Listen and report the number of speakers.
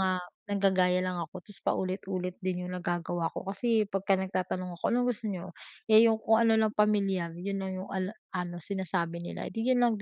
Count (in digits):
1